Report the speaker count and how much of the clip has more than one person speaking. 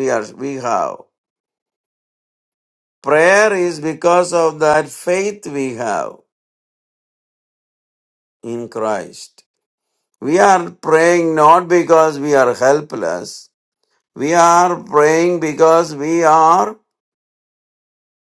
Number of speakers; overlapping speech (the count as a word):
one, no overlap